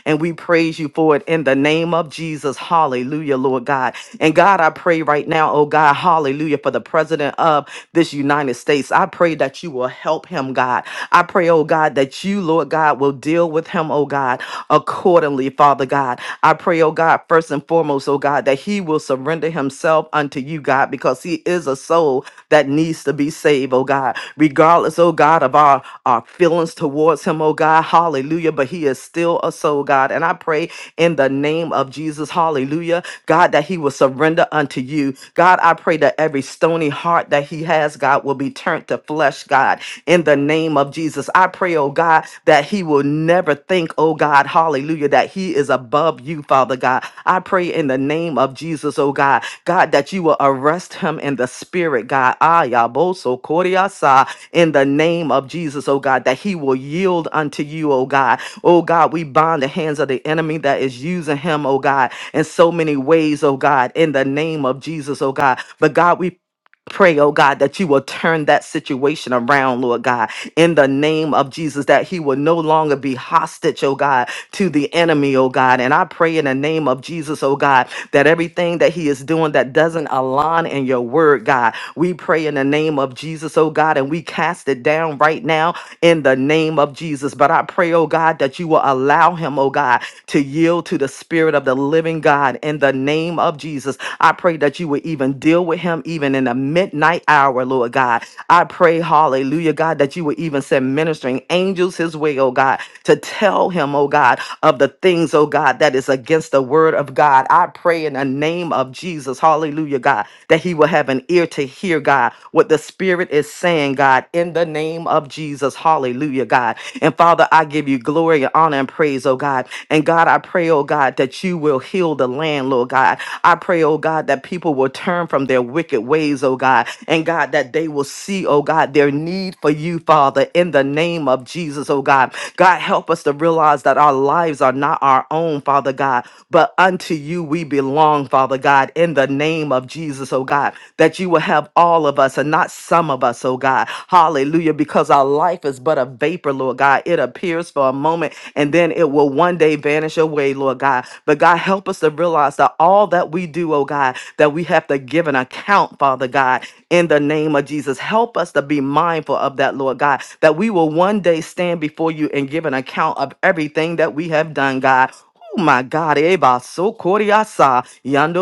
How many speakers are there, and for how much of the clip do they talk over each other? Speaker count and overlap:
1, no overlap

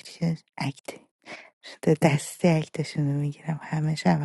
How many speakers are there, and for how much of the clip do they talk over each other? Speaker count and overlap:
1, no overlap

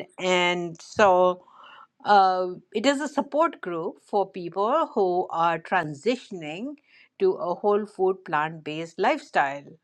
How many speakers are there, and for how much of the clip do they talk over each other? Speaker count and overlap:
1, no overlap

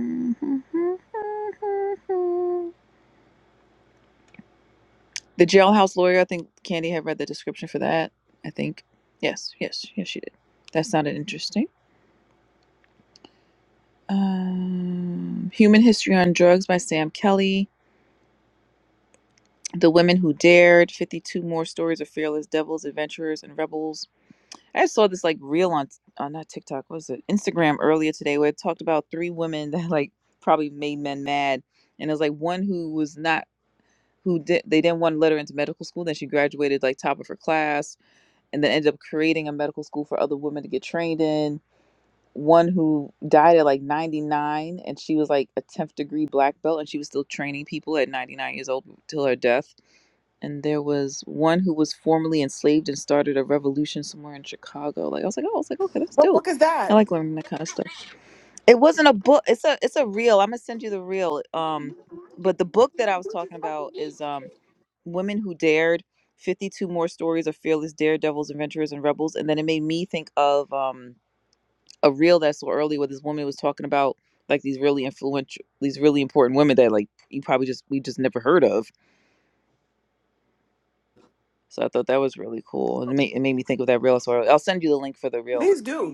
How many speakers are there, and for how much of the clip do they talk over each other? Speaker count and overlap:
2, about 1%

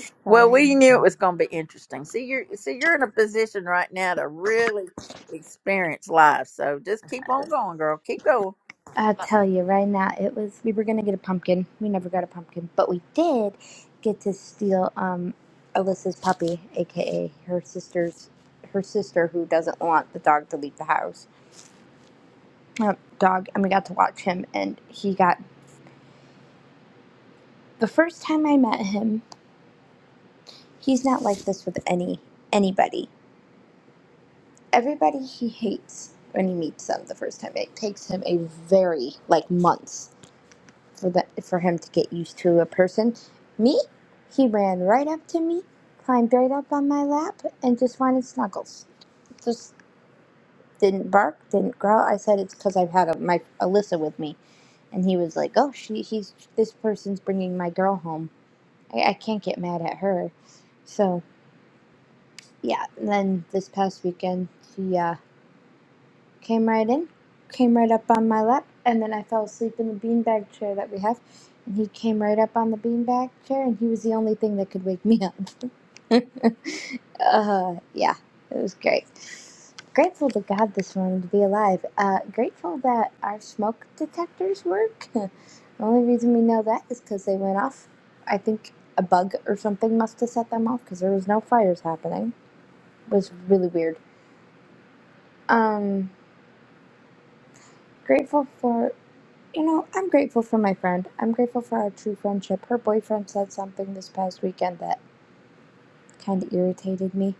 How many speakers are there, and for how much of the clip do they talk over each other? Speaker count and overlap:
2, under 1%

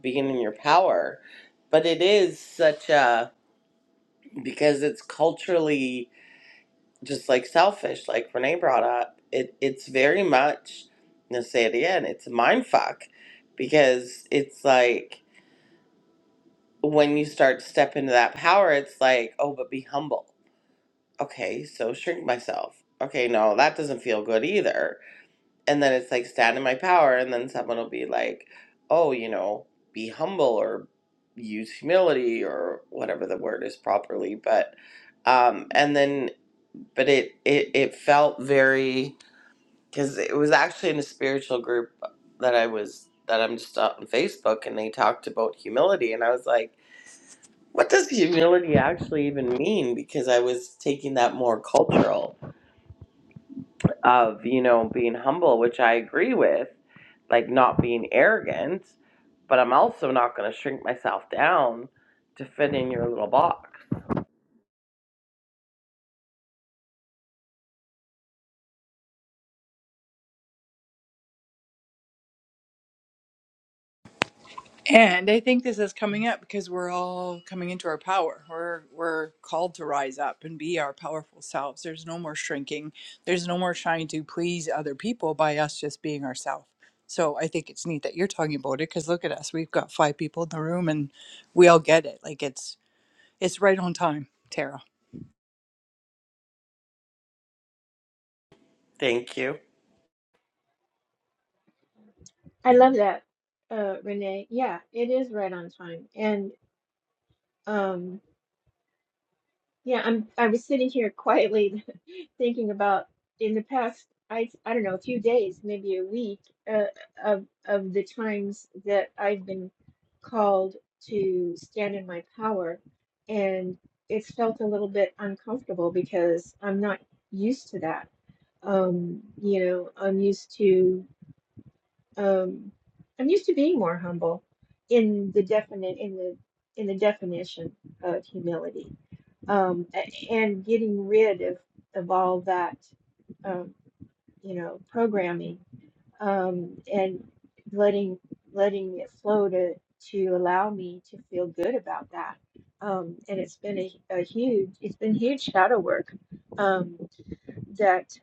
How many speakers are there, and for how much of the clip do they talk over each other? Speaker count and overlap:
3, no overlap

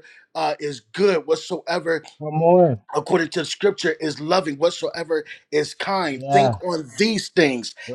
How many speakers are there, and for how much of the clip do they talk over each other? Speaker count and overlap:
2, about 6%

